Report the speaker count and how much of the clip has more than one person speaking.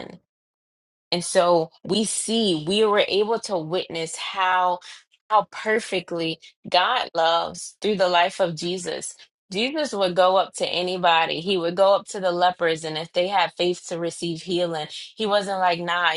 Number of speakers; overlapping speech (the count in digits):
1, no overlap